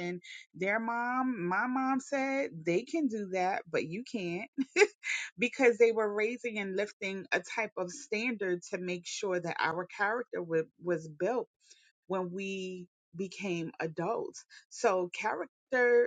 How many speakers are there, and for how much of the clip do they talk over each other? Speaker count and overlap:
1, no overlap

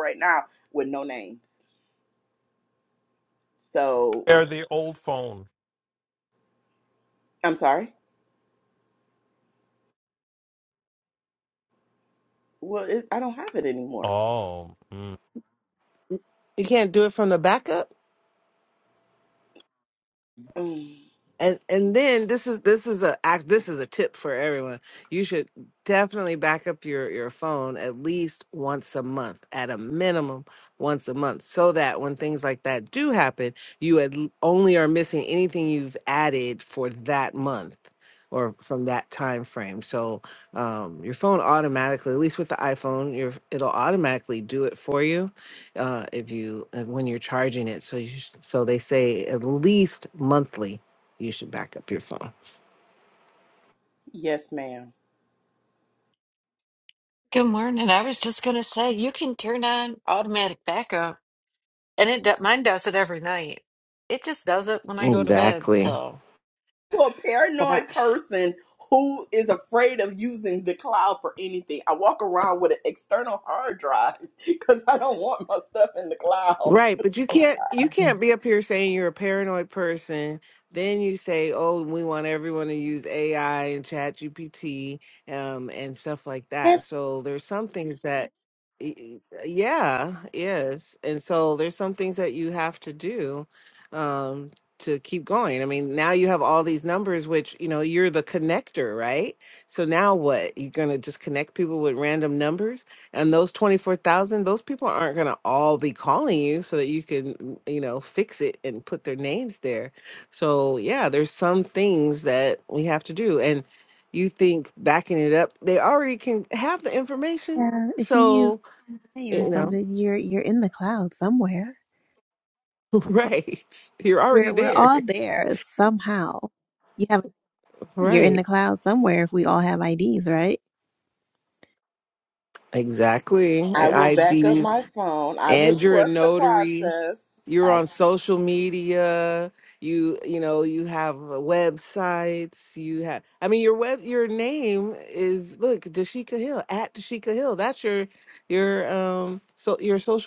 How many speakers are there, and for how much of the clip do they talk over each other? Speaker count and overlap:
5, about 4%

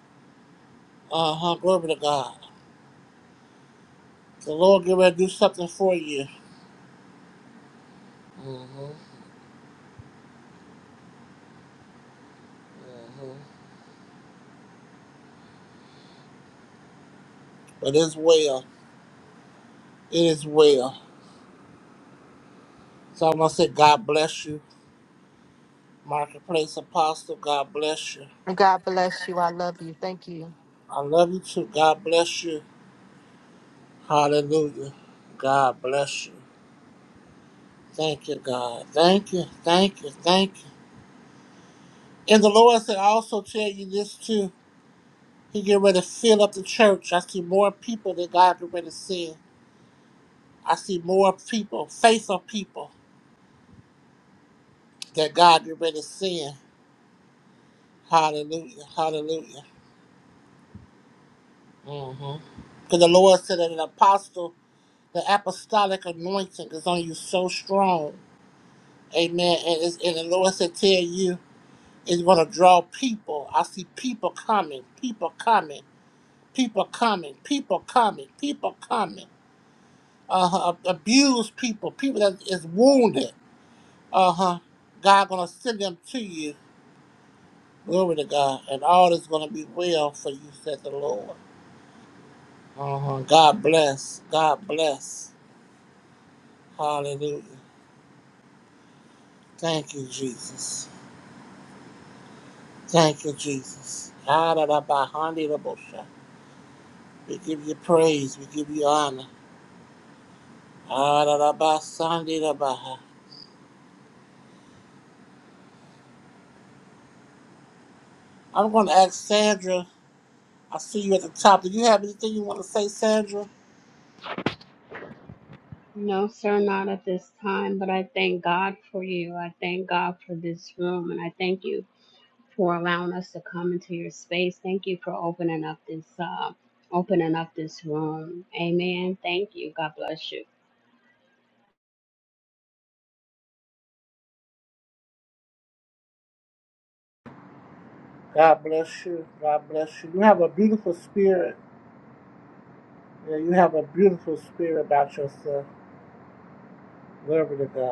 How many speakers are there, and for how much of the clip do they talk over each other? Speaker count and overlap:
3, no overlap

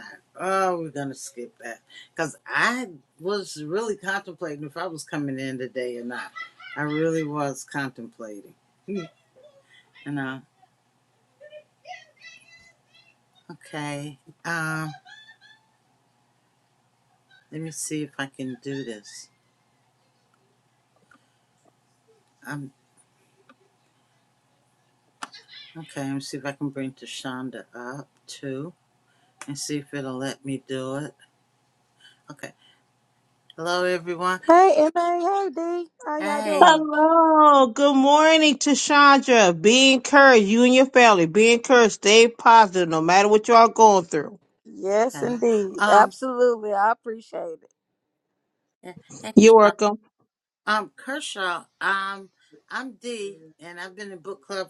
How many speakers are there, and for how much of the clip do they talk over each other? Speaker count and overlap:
3, about 3%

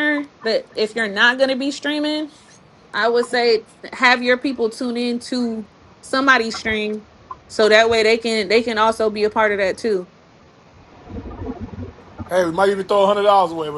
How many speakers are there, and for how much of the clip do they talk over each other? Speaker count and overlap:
2, no overlap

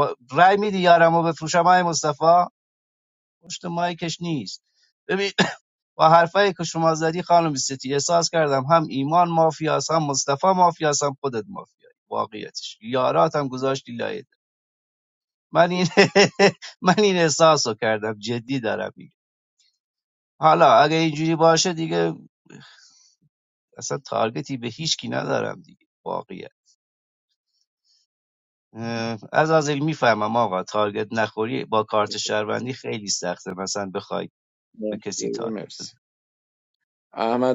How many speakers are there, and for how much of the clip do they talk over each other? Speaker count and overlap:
2, about 2%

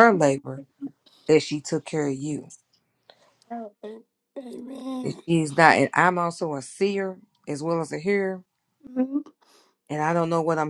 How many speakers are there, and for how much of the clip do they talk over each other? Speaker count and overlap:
2, about 2%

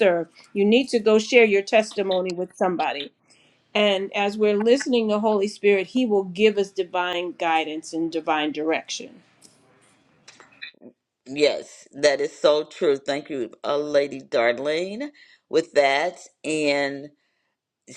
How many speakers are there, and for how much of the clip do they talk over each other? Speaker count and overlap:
2, no overlap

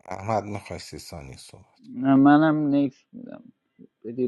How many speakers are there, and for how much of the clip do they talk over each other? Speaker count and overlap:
2, no overlap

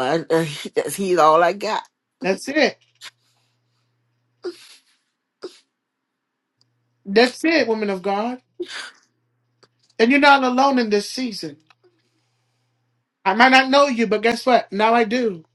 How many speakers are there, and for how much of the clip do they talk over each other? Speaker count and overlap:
2, no overlap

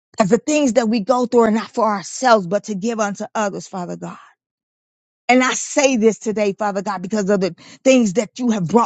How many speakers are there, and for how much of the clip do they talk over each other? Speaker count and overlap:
1, no overlap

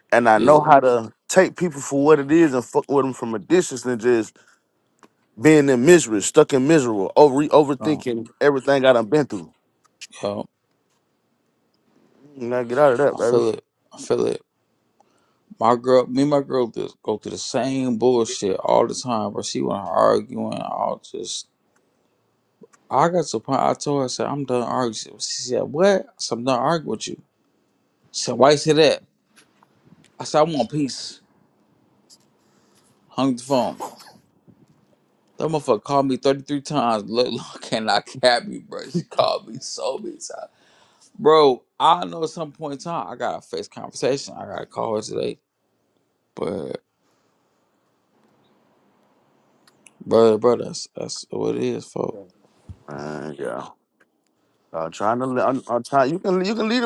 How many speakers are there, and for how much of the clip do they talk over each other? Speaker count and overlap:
2, about 1%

